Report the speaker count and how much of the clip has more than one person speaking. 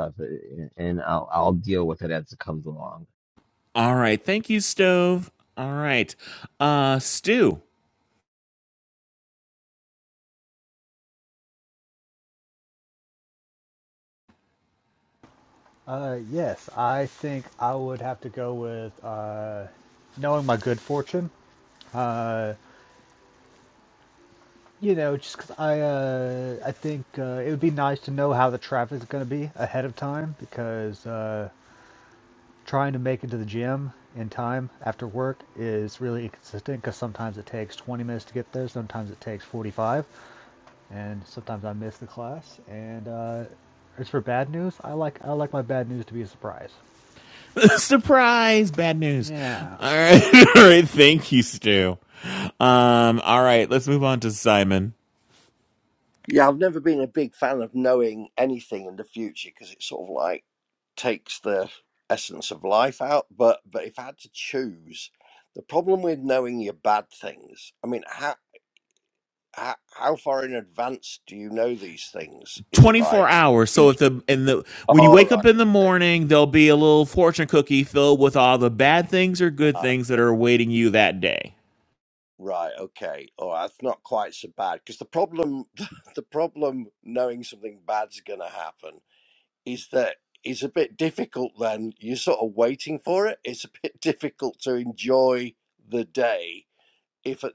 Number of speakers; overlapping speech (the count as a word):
four, about 2%